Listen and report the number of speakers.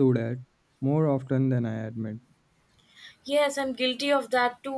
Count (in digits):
2